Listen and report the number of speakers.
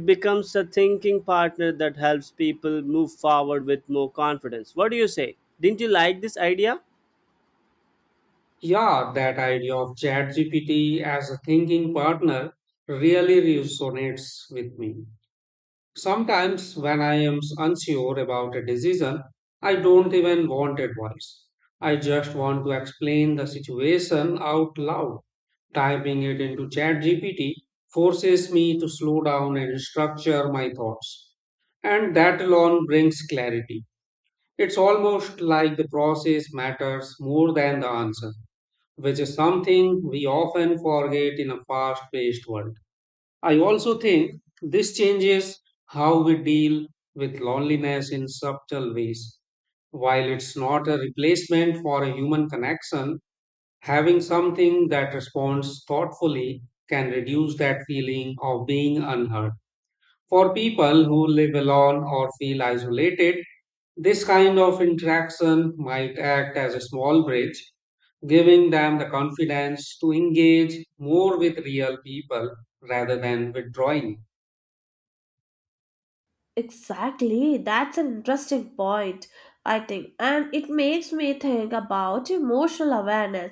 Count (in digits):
3